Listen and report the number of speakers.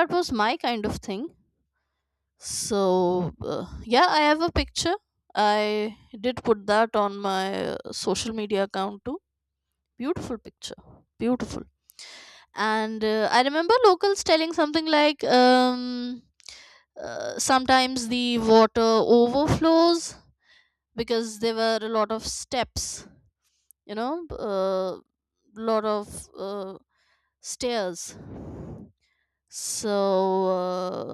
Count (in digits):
1